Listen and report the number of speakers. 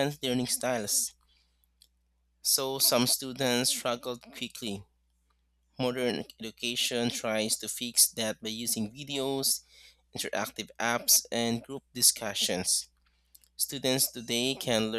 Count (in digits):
1